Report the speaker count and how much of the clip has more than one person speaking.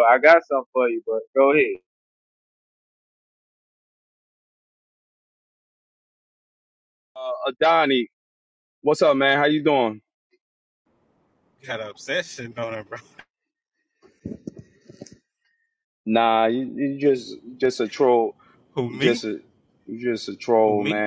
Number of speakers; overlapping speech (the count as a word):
three, about 3%